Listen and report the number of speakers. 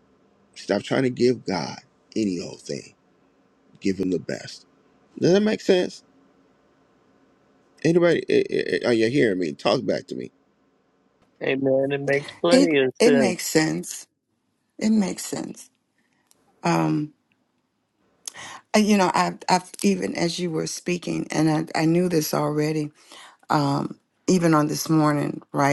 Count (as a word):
three